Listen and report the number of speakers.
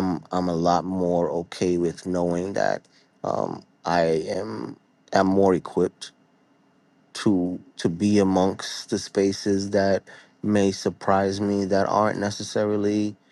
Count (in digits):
1